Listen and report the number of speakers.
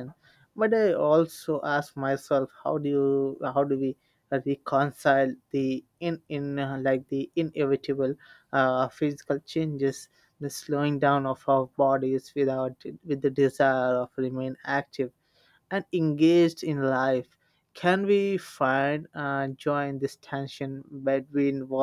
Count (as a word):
one